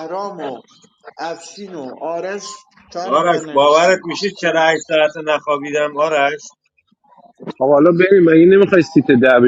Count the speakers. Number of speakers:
three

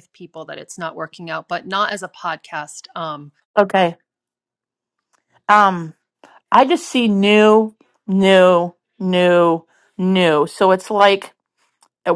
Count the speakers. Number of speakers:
two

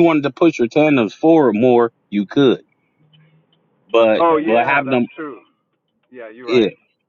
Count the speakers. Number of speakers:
two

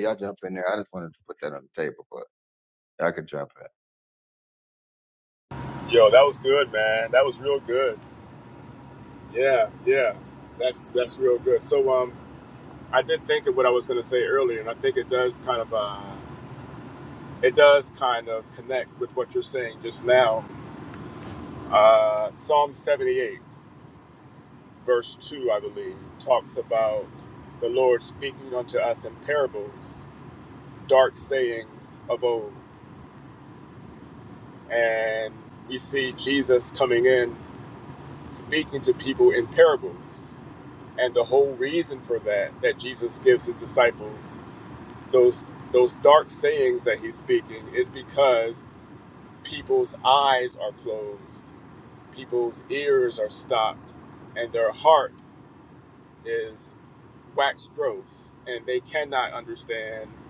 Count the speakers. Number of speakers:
two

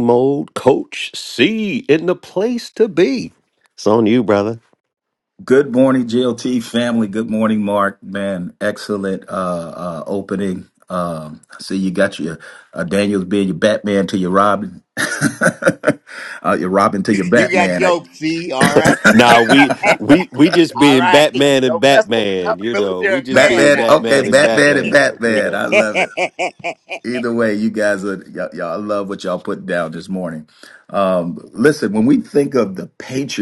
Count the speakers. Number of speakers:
three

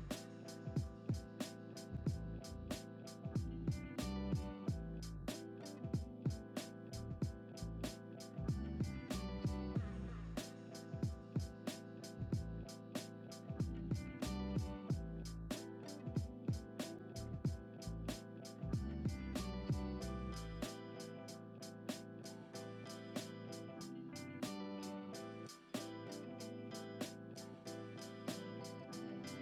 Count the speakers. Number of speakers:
zero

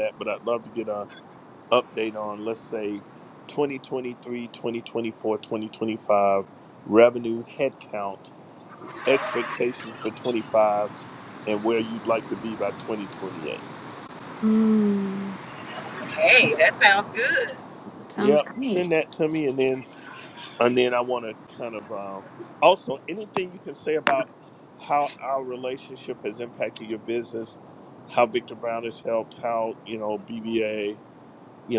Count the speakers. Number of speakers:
three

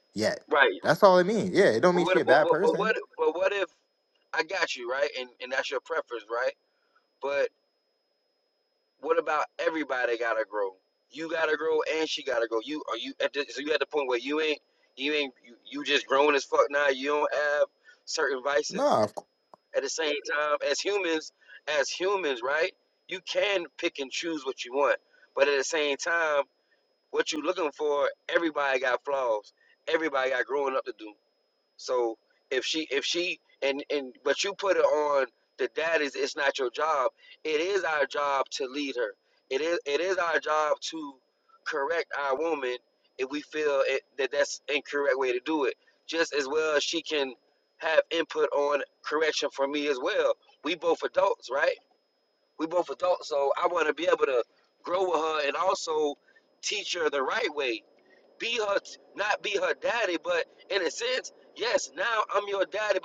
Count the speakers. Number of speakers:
two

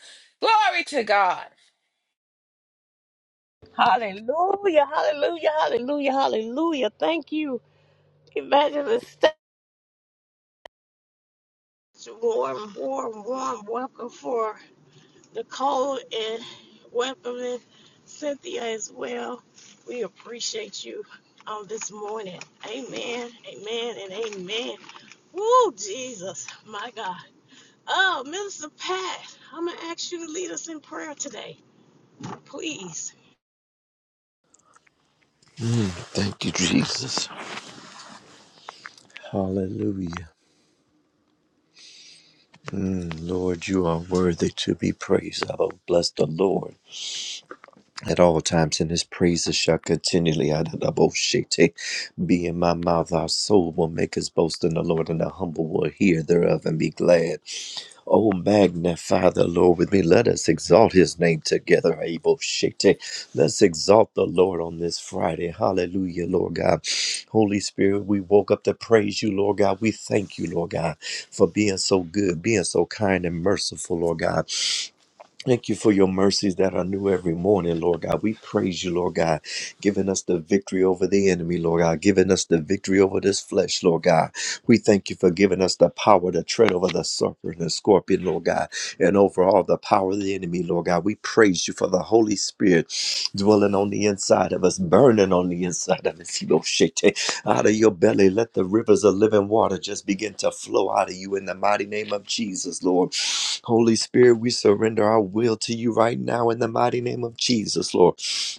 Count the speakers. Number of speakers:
three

